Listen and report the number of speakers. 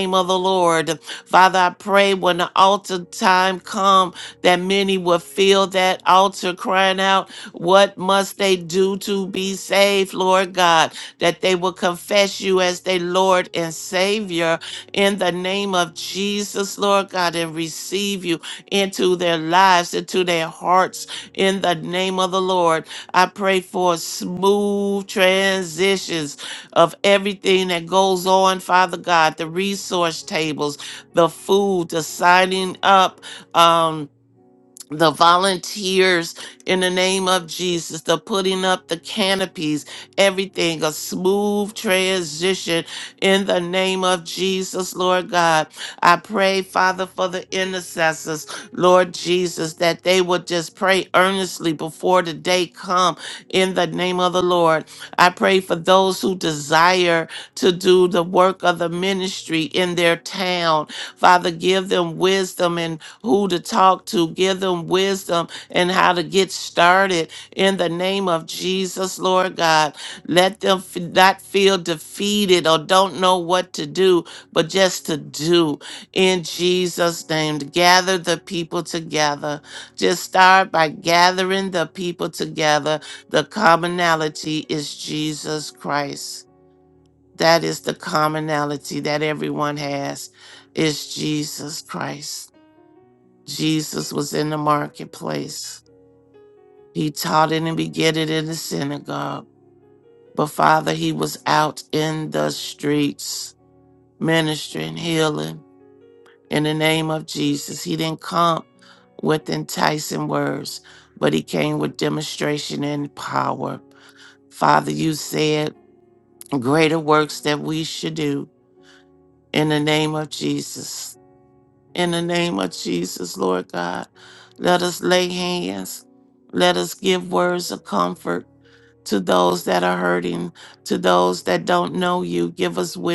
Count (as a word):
one